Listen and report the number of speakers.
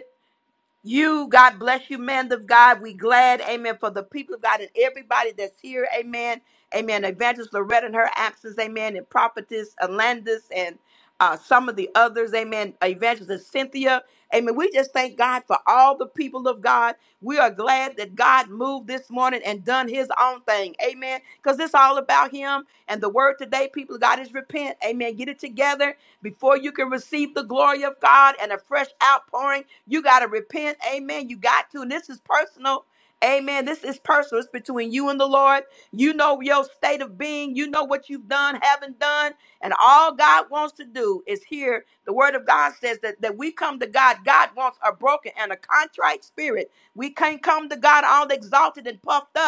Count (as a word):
one